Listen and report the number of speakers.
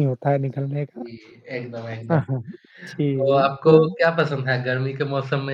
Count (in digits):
2